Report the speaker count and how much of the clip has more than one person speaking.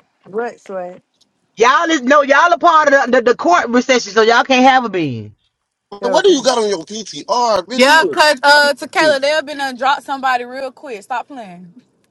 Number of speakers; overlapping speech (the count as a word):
four, about 8%